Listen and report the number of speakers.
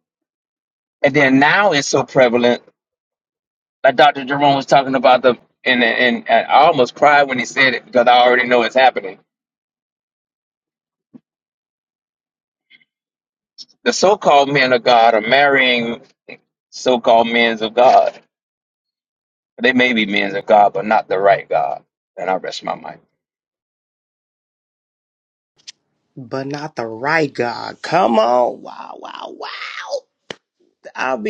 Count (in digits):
2